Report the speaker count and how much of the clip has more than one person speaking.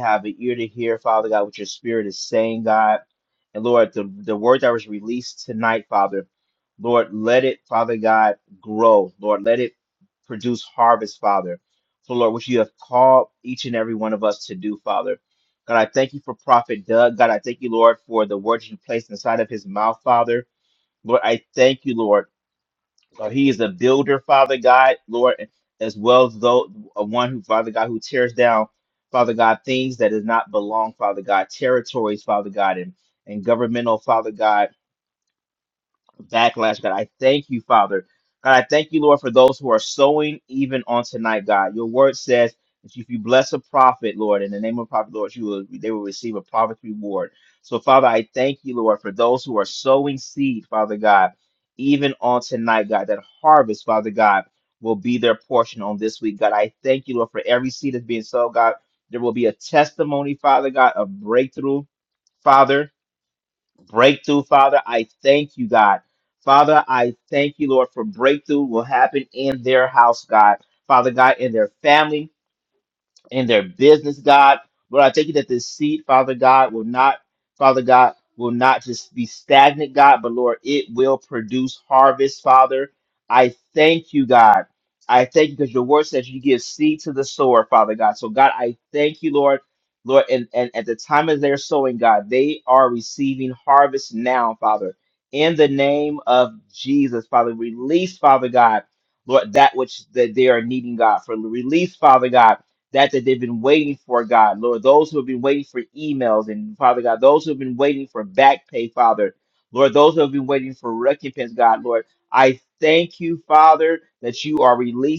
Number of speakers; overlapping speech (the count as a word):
one, no overlap